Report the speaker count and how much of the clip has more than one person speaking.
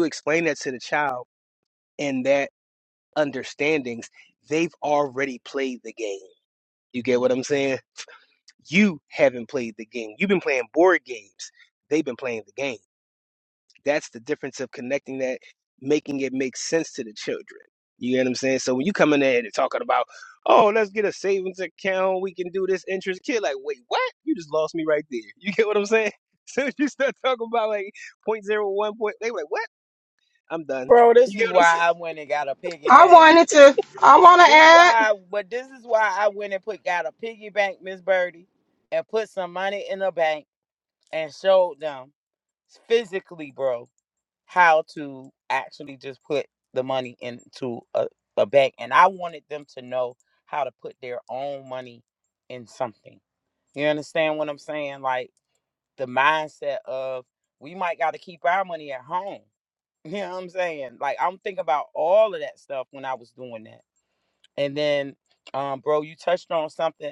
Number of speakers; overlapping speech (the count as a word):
three, about 2%